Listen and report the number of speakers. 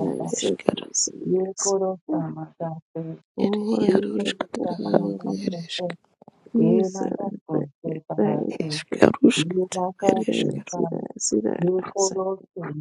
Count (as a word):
three